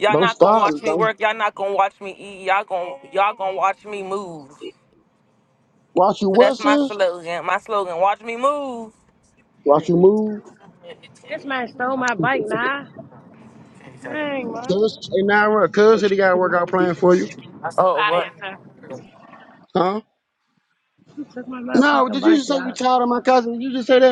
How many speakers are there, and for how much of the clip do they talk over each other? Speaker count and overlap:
three, about 11%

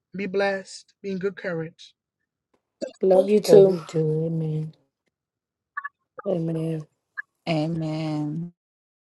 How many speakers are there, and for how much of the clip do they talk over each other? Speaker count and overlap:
four, about 8%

